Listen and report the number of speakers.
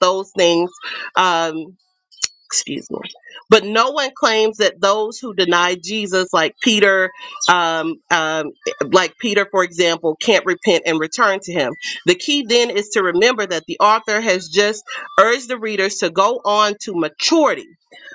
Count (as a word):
one